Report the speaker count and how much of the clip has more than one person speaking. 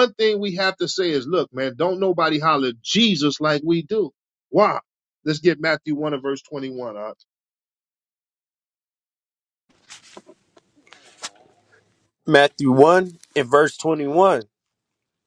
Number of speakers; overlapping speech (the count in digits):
2, no overlap